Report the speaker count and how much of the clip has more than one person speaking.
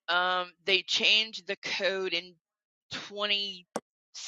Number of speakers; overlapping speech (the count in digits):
1, no overlap